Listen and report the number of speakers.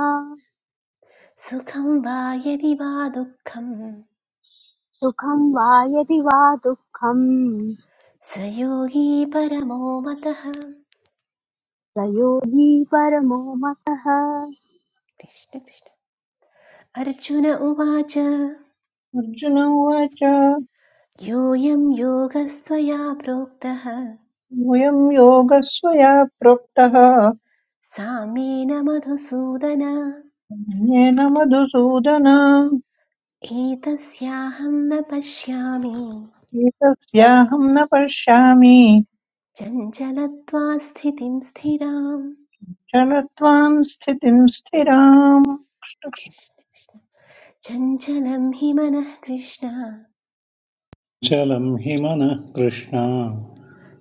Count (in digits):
4